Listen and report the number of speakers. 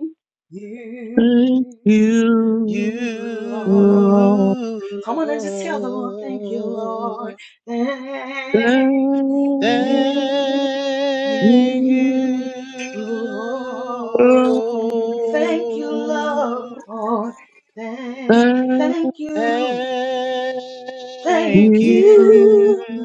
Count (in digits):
3